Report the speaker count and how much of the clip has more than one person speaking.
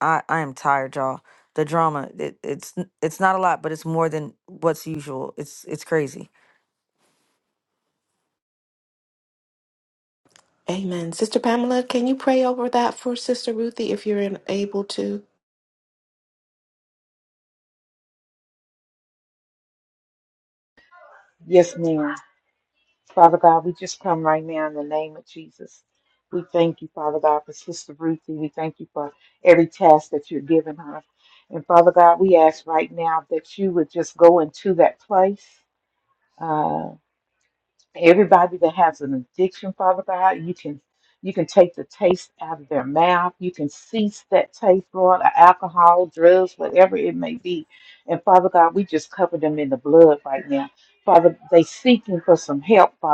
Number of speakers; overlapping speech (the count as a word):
three, no overlap